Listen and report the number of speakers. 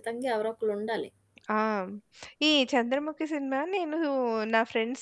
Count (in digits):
2